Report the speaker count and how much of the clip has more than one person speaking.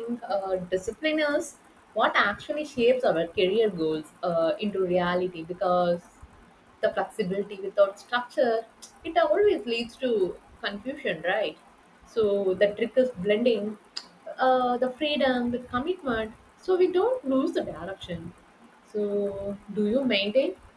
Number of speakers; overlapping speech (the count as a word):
one, no overlap